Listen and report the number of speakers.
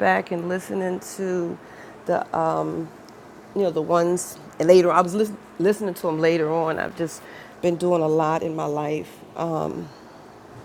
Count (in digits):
1